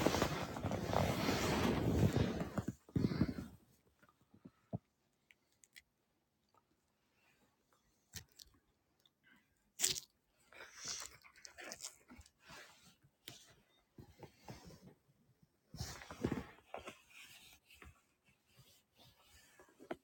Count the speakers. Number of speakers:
0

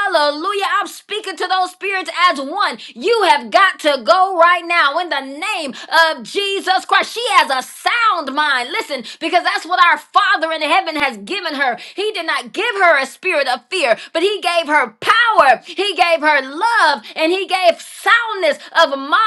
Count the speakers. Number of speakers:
1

